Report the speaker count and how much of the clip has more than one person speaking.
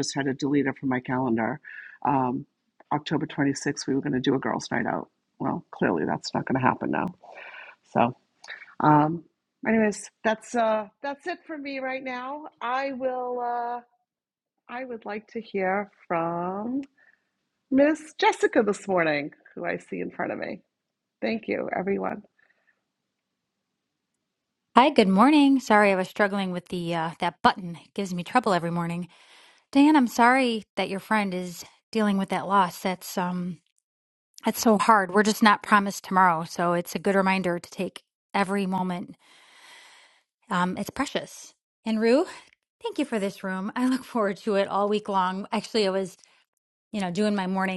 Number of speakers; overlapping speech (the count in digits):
2, no overlap